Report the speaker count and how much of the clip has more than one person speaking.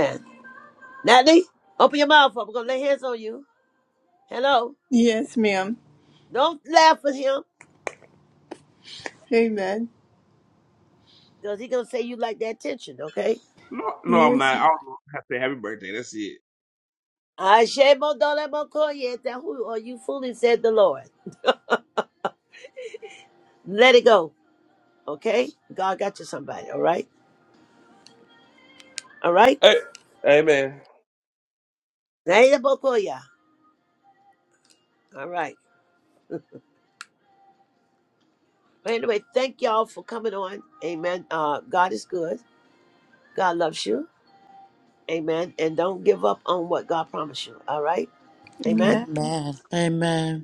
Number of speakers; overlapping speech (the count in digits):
4, about 2%